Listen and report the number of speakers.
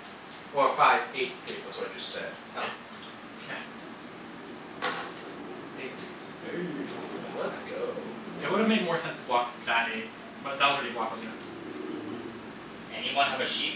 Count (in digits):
4